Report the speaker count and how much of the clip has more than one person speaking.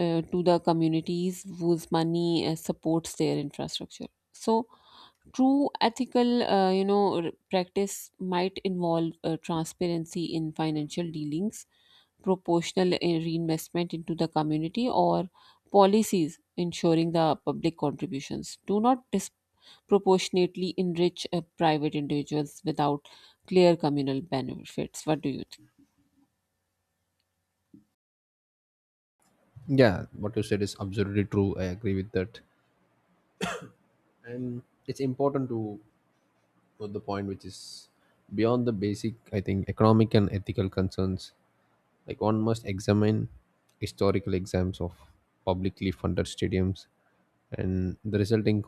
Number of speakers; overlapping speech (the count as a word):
two, no overlap